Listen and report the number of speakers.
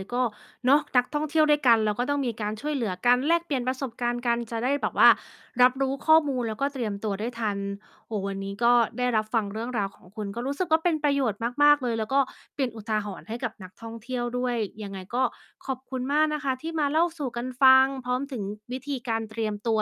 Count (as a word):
one